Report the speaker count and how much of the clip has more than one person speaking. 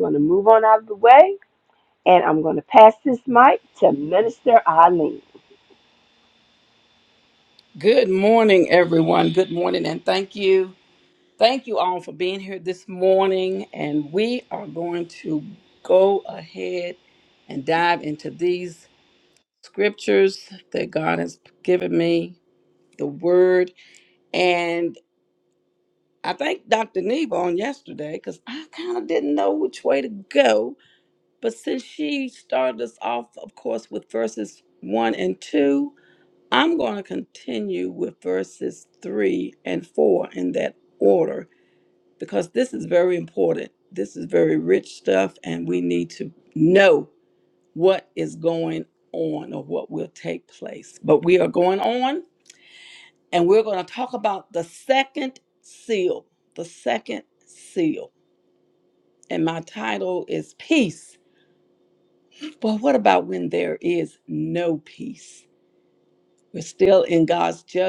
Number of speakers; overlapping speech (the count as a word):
two, no overlap